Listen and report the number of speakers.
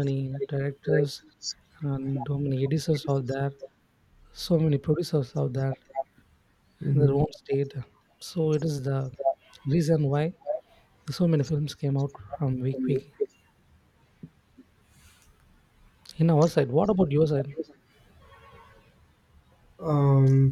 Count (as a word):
two